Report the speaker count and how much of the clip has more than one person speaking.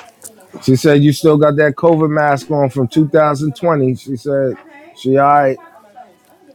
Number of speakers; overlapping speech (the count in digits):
1, no overlap